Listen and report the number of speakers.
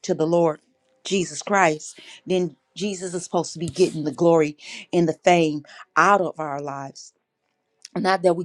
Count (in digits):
1